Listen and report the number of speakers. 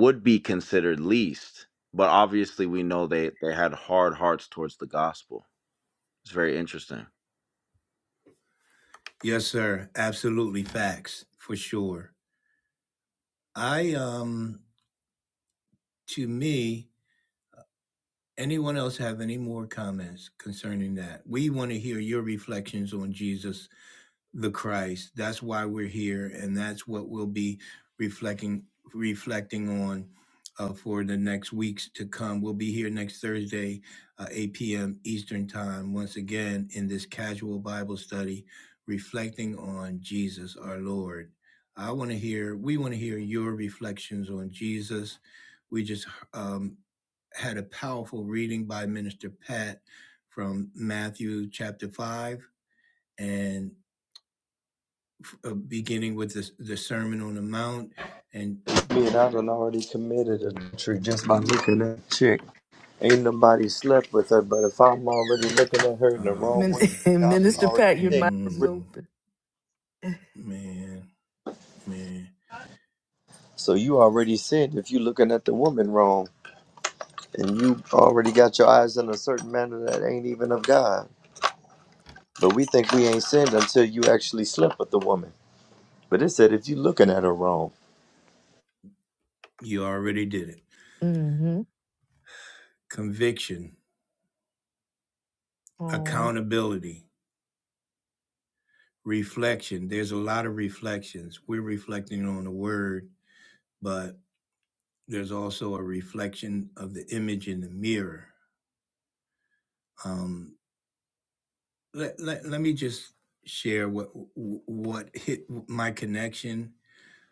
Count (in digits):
4